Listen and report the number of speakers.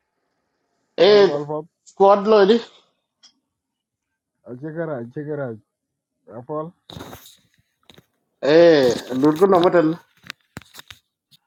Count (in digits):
2